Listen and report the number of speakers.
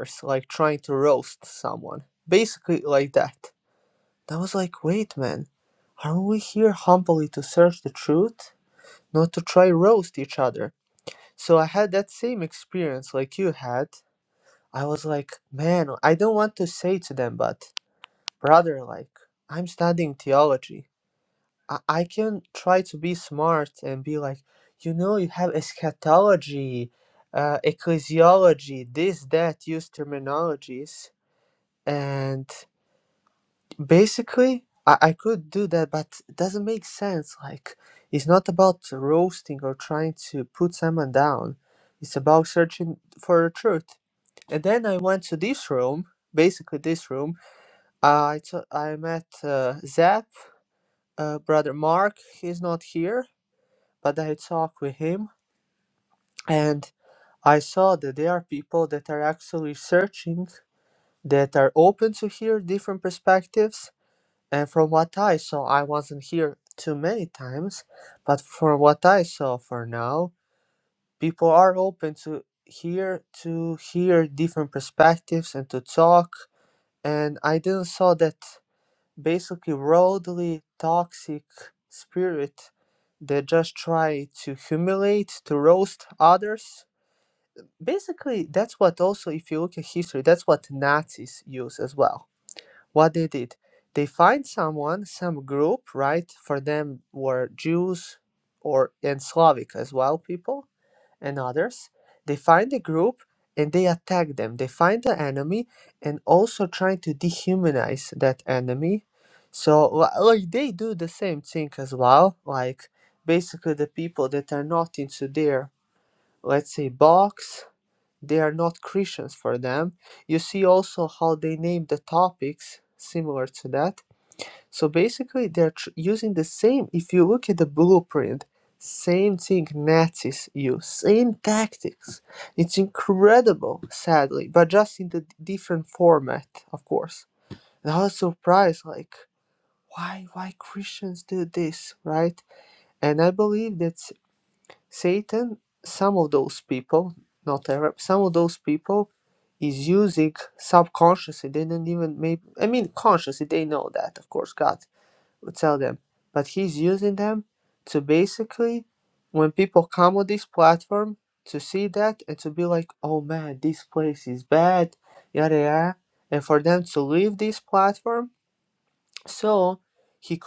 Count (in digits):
1